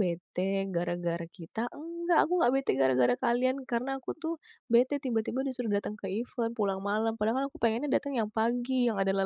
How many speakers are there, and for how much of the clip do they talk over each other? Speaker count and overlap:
one, no overlap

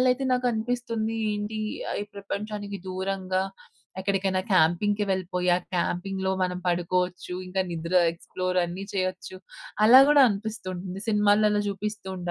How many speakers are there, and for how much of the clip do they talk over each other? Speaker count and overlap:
one, no overlap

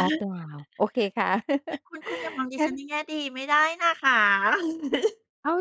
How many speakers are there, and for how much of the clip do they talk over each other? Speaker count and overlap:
two, about 3%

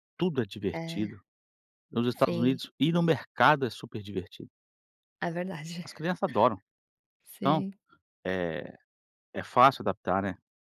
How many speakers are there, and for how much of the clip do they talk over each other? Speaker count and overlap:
two, about 9%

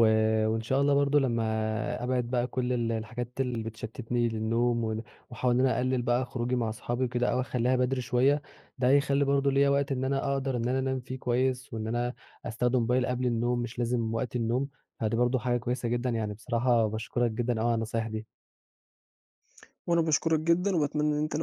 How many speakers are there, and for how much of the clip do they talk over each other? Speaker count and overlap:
two, no overlap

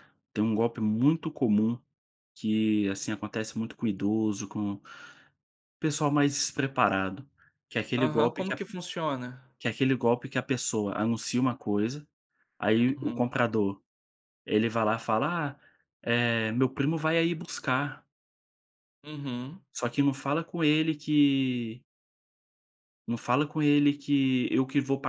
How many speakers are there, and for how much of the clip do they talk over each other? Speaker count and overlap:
two, about 4%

